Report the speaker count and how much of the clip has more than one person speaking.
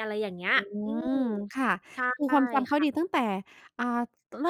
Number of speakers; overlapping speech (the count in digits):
2, about 8%